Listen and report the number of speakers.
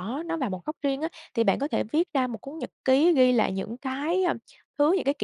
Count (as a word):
one